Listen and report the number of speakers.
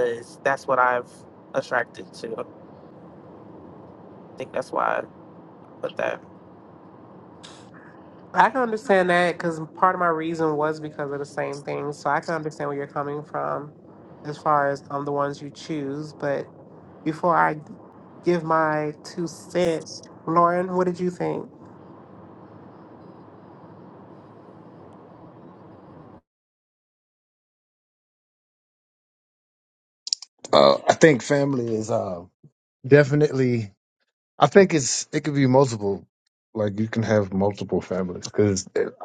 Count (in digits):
3